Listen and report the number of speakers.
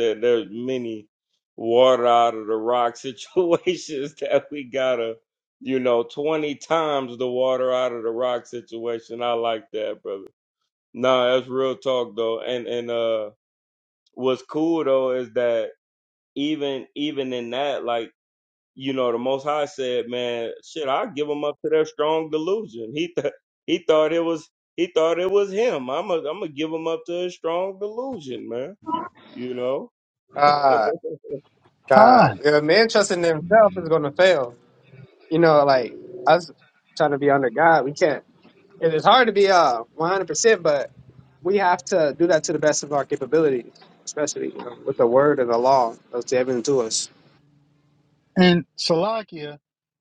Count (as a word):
three